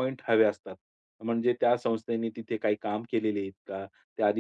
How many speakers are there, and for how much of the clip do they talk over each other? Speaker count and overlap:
1, no overlap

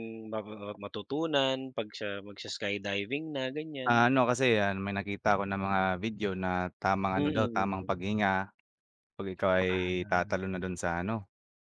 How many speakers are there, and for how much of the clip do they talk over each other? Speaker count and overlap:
2, about 12%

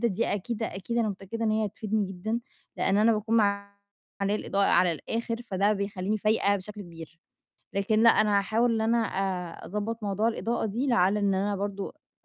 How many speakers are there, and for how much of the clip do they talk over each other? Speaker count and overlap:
1, no overlap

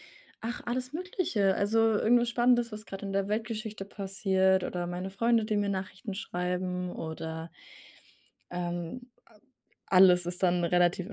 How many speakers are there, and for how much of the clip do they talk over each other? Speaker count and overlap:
1, no overlap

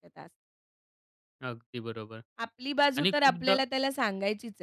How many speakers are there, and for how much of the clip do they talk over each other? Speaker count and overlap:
2, about 14%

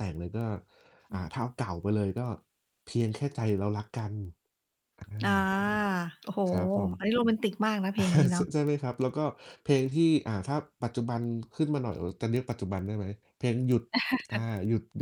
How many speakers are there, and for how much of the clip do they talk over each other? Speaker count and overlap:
2, about 1%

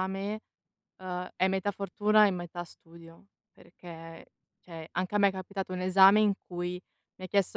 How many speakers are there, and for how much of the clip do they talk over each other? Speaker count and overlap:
1, no overlap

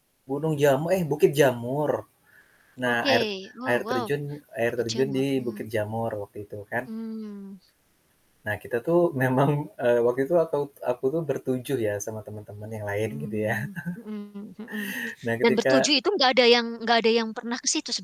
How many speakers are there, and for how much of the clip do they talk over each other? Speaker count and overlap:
2, about 15%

